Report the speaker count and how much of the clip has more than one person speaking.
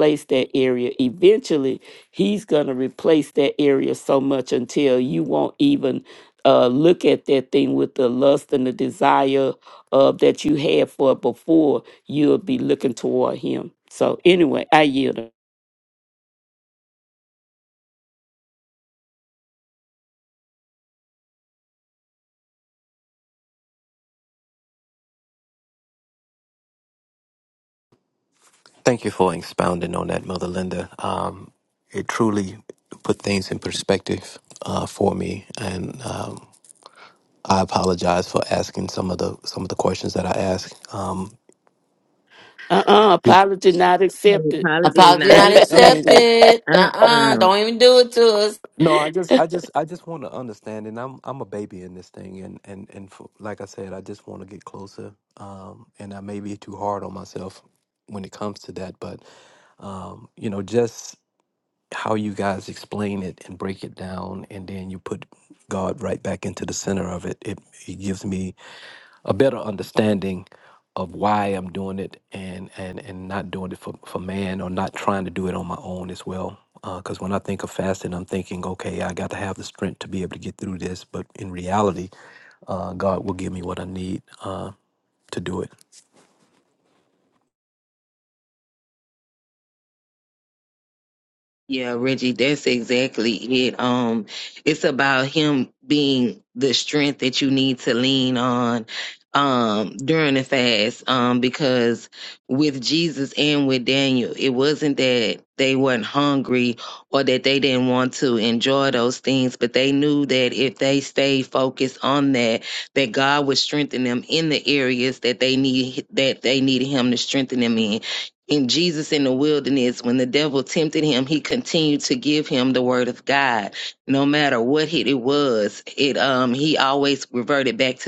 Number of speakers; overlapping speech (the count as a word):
four, about 2%